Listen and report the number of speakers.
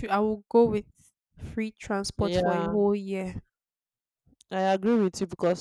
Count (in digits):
2